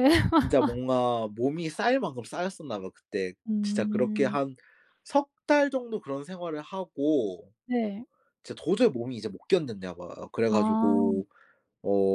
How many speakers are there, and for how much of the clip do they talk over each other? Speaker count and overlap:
two, about 13%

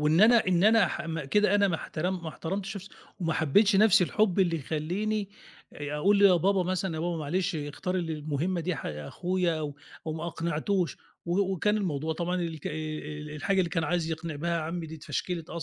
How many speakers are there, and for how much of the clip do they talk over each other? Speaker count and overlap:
one, no overlap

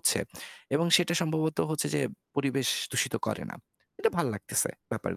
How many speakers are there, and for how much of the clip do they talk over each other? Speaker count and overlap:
one, no overlap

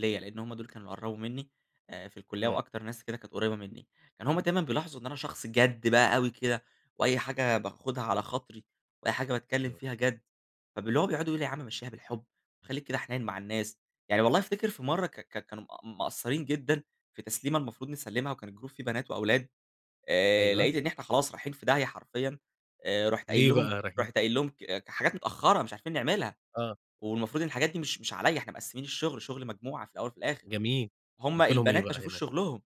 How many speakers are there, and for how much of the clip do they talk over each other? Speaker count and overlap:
two, about 7%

